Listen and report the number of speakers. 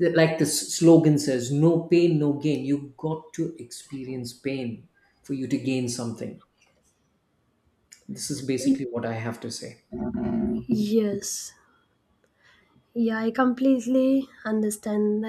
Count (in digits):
2